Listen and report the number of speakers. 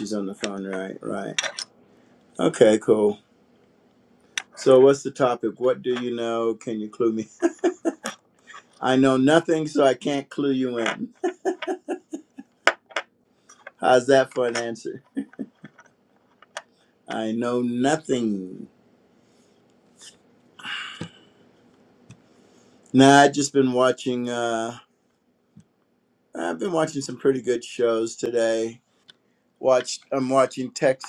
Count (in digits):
1